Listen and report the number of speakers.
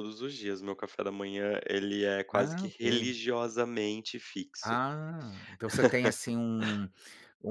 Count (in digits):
2